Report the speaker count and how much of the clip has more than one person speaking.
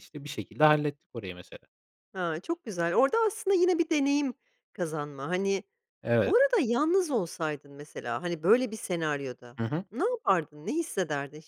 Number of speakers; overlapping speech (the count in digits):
2, about 1%